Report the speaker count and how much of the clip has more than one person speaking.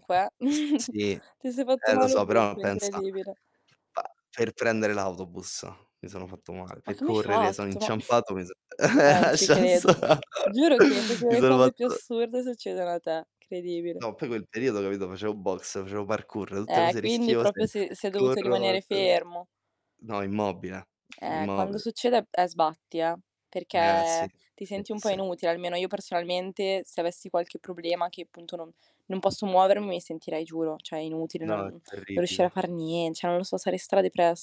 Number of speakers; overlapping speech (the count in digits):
2, about 22%